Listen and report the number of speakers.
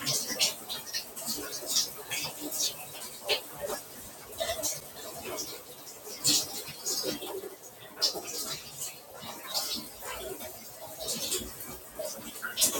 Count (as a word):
zero